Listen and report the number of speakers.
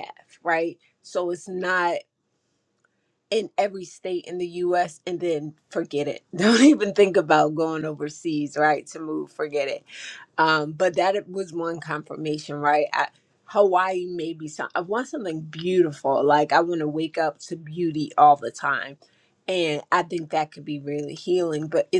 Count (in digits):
1